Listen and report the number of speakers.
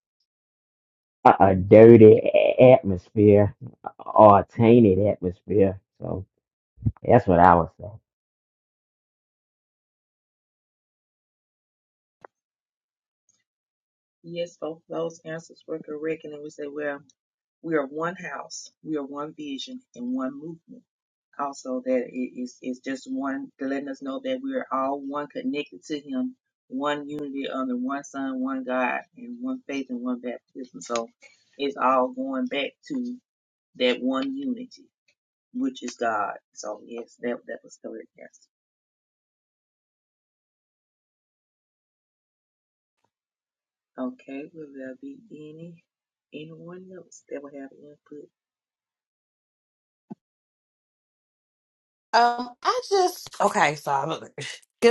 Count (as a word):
three